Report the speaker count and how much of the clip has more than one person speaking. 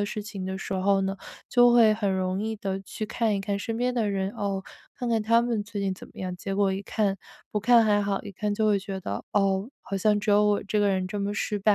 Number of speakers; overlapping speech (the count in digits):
1, no overlap